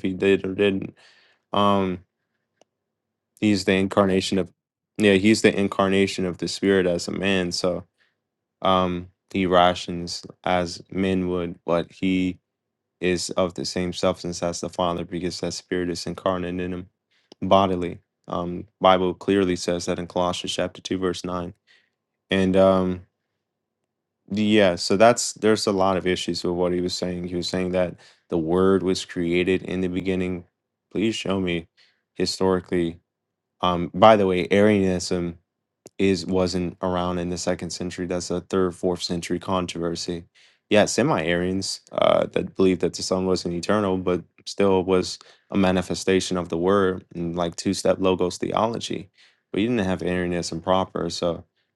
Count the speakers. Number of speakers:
1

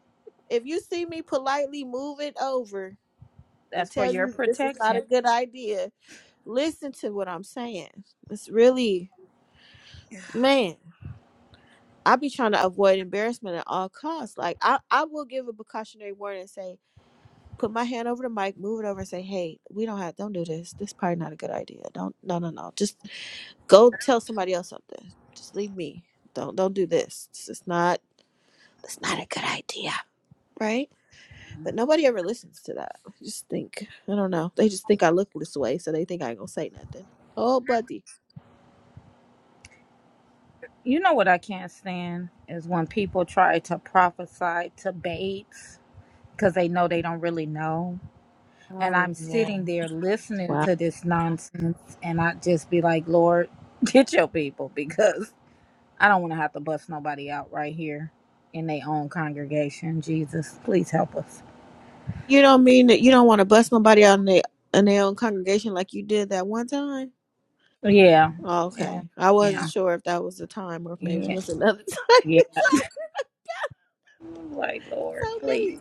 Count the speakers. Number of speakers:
2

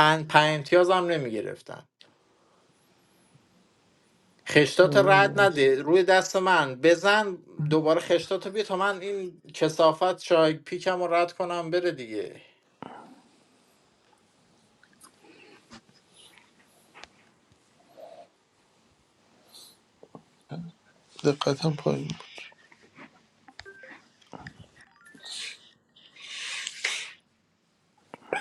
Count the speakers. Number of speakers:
2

